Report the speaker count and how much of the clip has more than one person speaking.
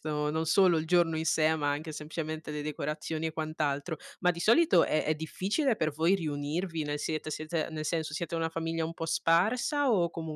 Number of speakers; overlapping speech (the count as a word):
one, no overlap